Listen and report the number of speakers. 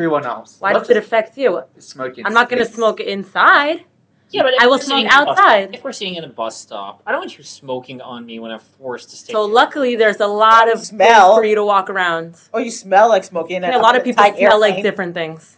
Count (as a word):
four